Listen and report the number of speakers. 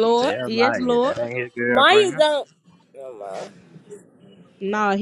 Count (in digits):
3